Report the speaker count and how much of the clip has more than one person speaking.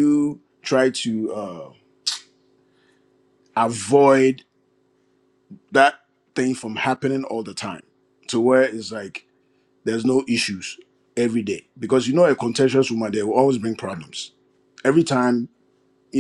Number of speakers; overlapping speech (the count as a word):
one, no overlap